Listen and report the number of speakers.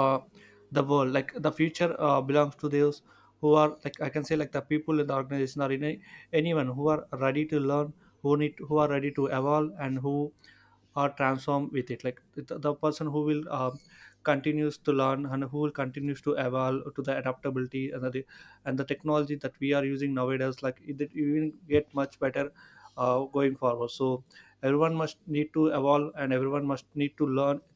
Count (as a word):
one